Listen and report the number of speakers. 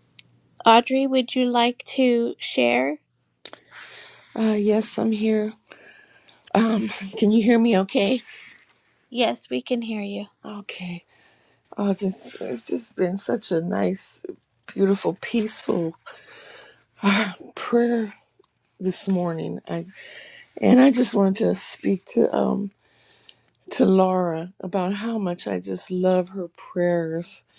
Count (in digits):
2